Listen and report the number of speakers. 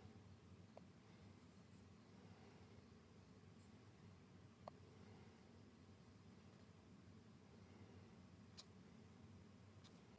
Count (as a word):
zero